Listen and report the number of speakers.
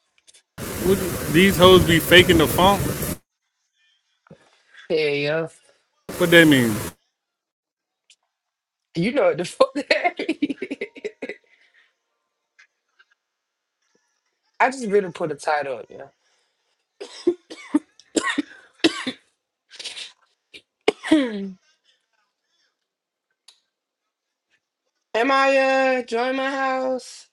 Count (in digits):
2